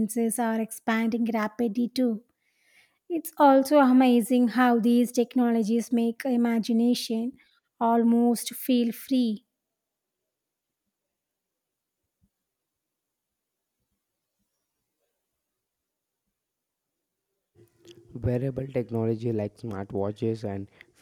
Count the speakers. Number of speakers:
two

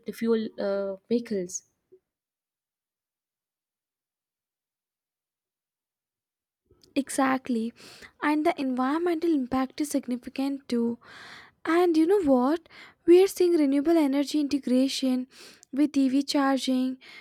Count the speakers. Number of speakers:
two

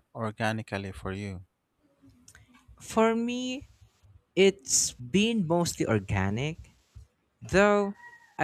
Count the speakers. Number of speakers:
two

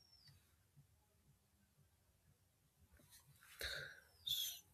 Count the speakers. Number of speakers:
zero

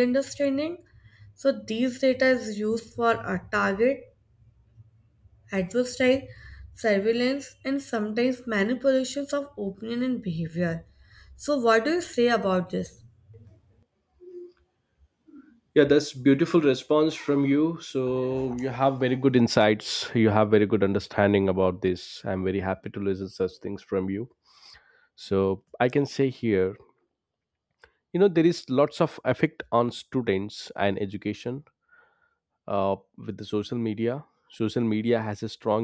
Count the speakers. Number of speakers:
two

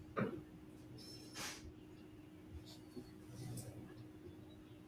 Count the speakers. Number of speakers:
zero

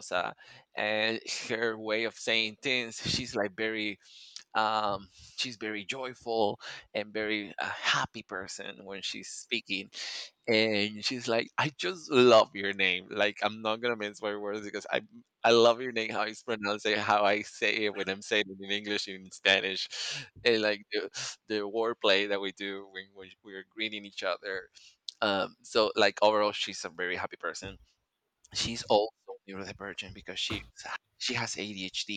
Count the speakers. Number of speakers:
one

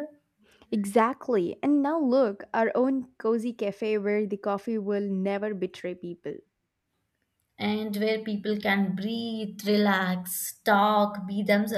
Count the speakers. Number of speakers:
two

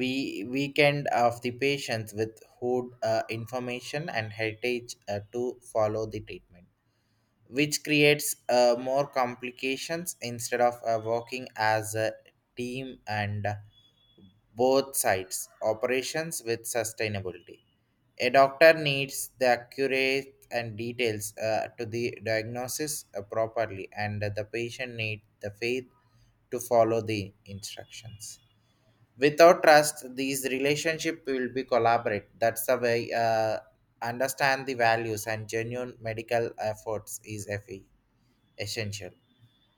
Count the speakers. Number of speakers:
one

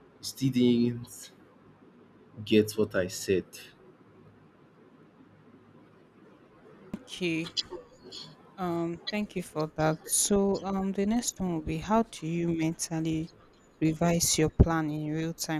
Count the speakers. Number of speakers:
two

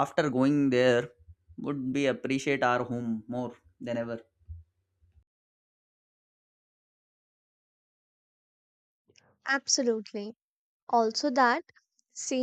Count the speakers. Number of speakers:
two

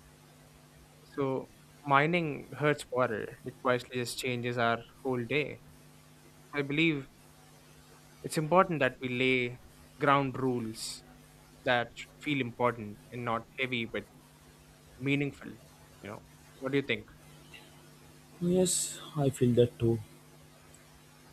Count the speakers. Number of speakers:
two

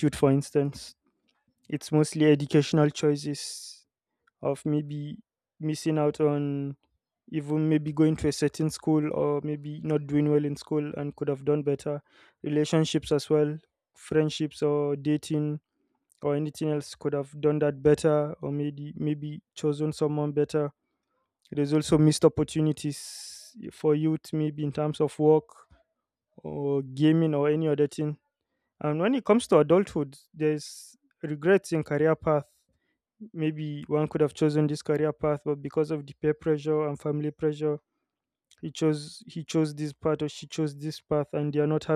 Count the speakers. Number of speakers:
one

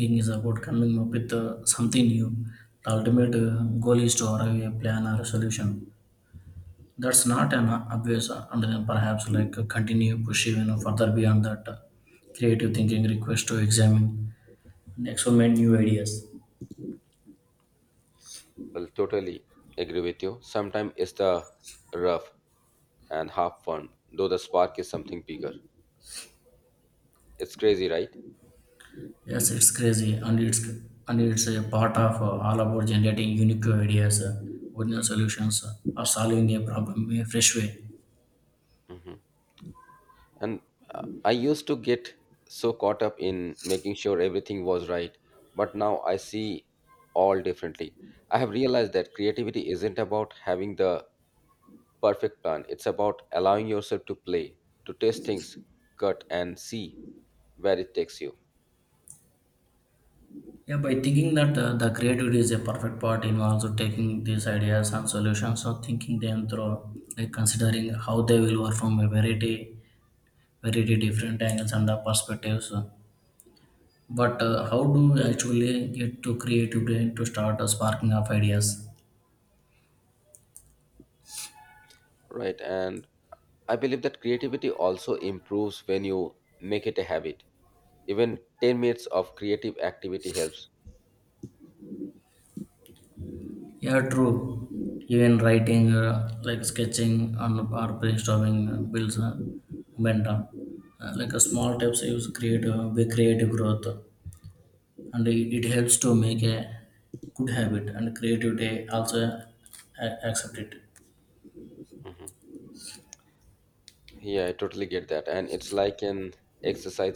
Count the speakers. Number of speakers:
two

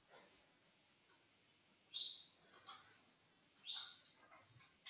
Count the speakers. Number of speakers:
zero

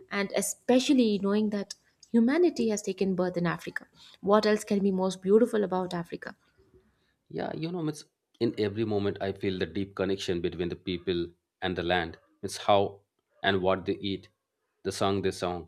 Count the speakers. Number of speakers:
two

